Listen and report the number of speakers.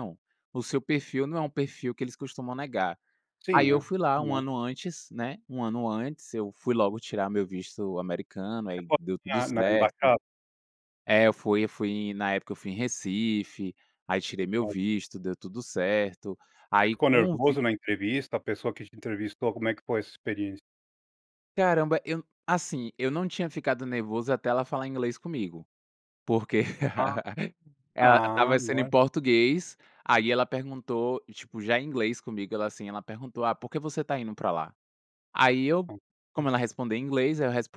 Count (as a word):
two